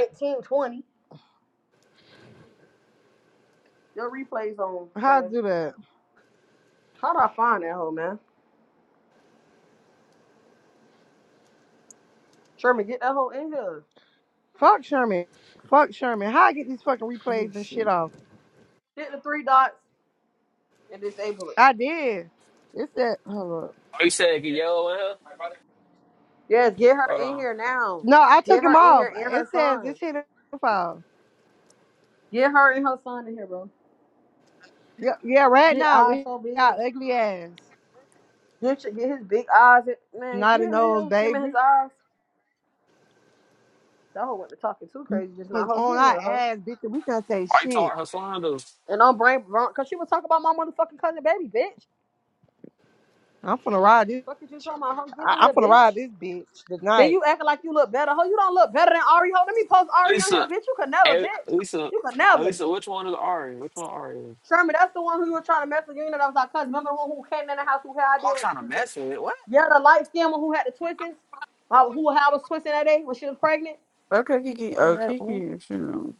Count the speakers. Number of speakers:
four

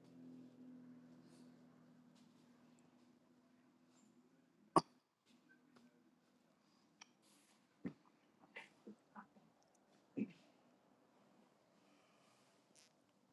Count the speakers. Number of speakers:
zero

